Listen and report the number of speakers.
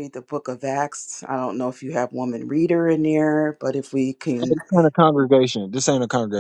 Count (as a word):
two